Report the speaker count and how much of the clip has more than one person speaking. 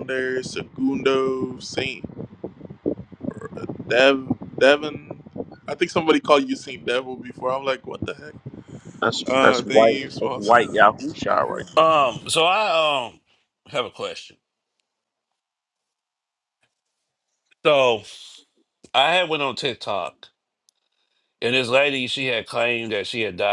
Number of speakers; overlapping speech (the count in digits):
3, about 6%